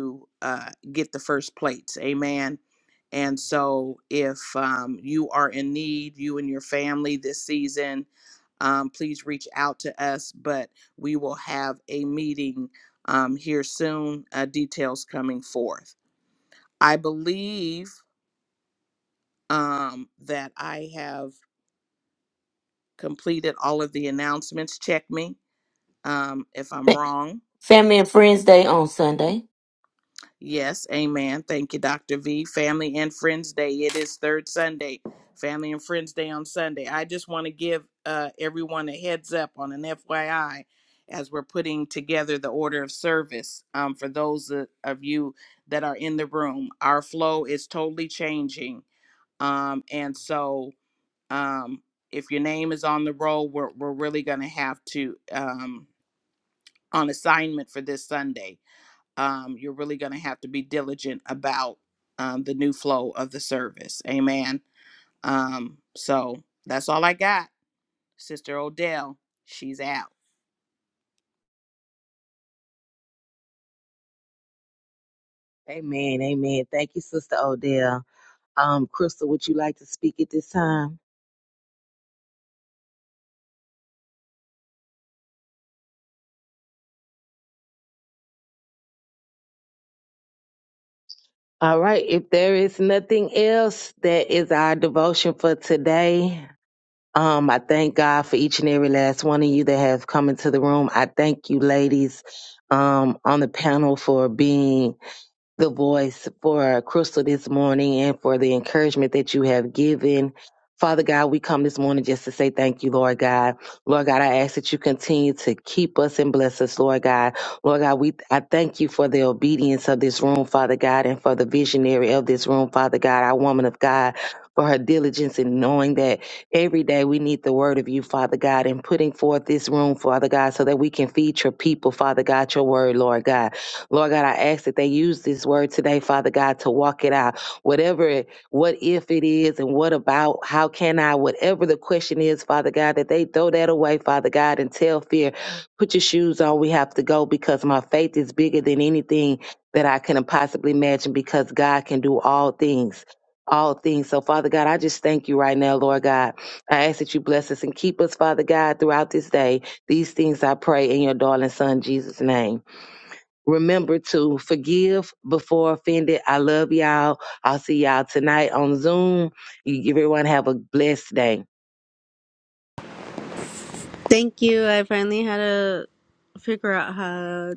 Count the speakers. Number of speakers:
4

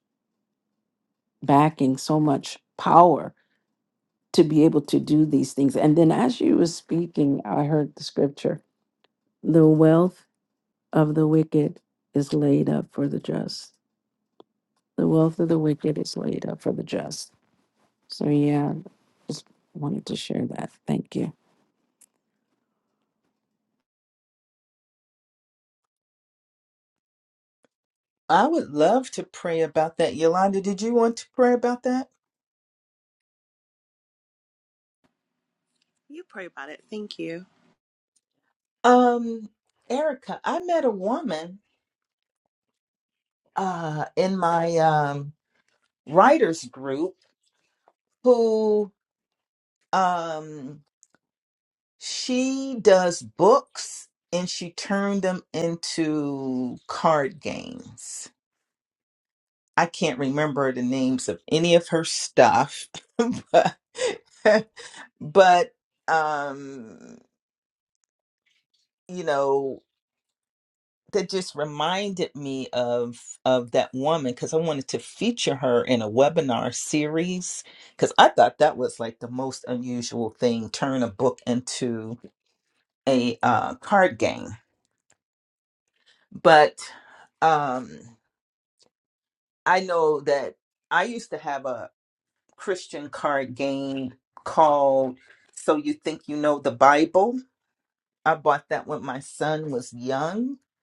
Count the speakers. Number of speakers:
3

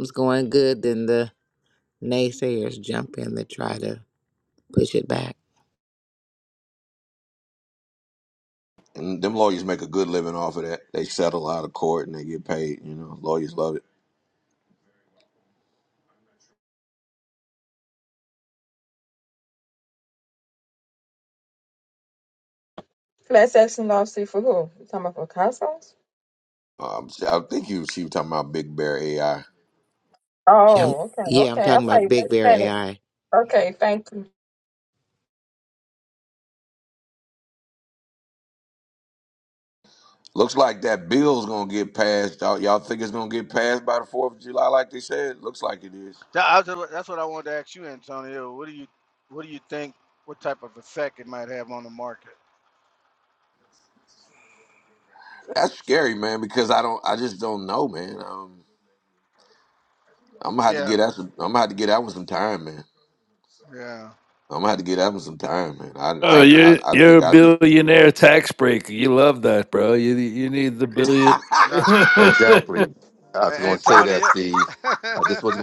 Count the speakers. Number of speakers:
6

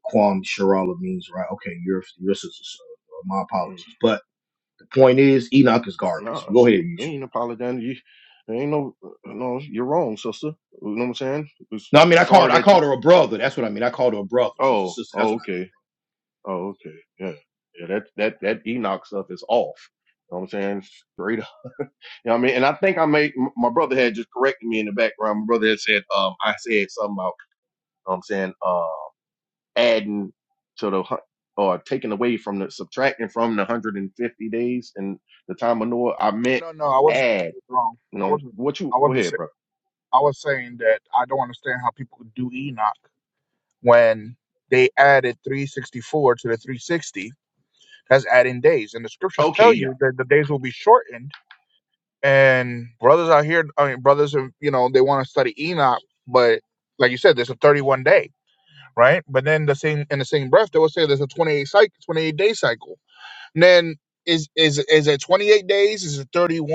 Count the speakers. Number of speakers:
3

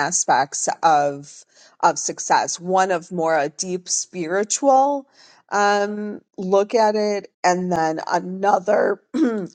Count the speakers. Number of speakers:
1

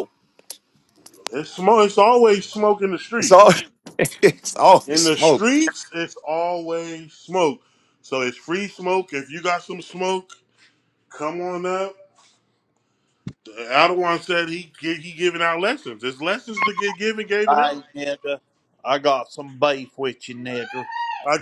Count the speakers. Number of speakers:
3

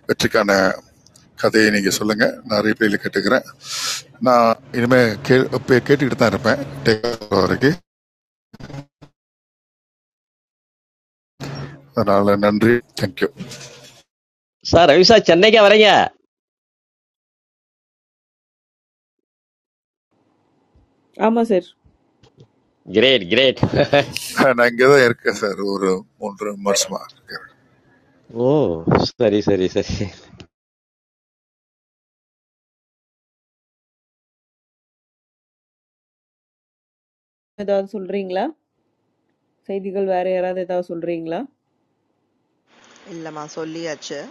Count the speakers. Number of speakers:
4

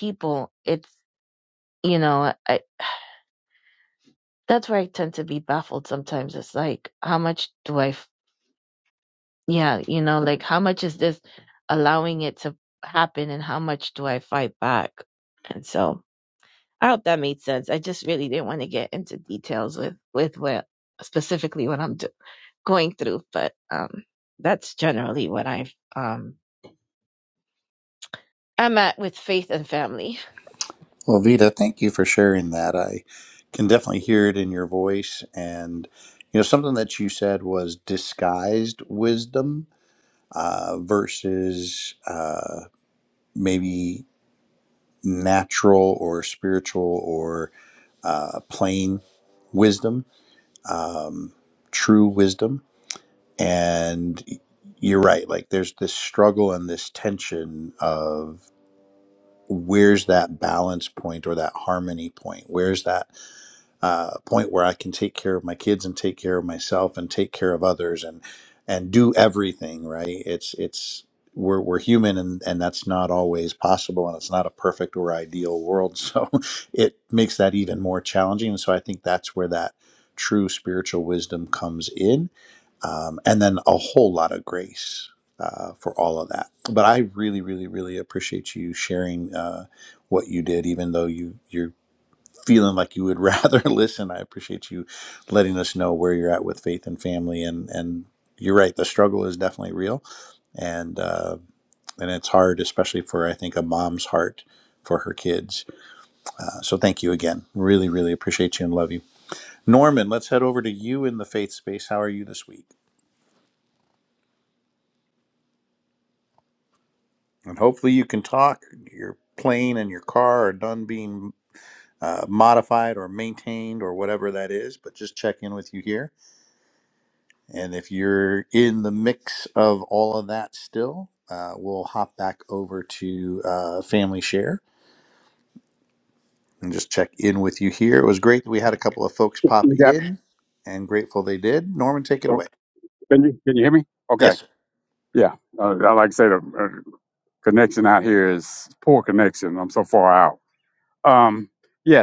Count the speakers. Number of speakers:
3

